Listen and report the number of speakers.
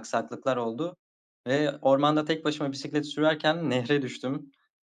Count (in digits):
1